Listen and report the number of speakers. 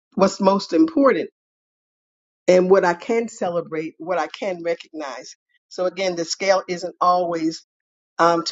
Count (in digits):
1